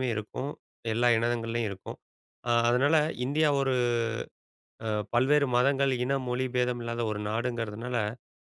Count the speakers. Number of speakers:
one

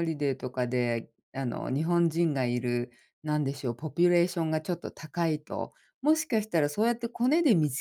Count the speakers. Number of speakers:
one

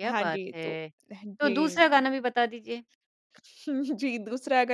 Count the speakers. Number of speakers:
two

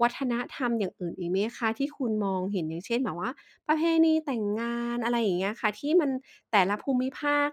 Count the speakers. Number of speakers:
one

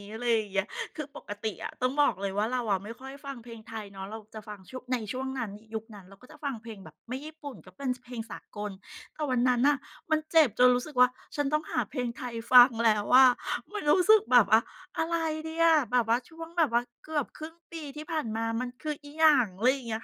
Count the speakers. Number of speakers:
one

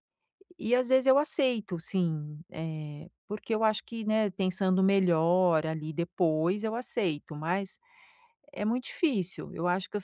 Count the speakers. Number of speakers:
one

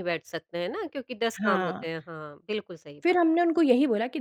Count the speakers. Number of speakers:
two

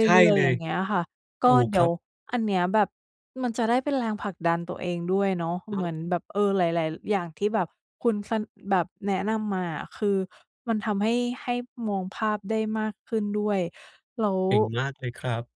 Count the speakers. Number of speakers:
two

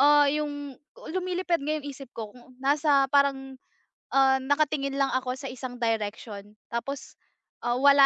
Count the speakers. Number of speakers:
one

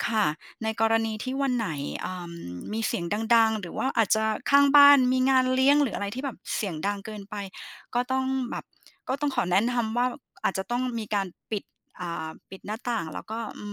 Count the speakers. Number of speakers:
one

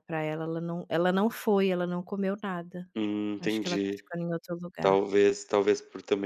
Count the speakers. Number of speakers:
two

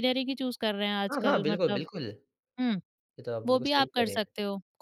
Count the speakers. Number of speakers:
two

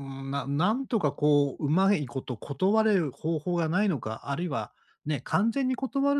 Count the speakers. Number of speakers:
one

